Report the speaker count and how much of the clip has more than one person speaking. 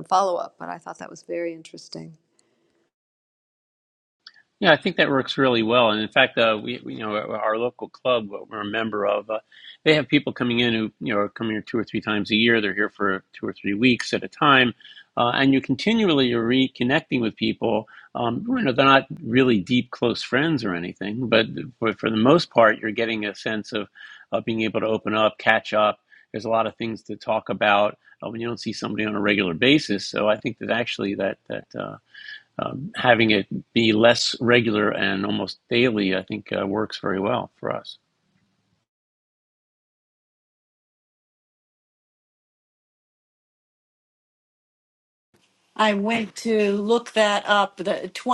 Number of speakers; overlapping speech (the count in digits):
3, no overlap